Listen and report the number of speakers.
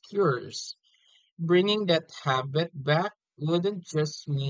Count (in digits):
1